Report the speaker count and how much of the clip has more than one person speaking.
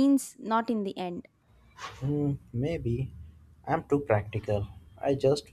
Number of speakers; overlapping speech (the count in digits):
2, no overlap